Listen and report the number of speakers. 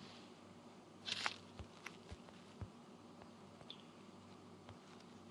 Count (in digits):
0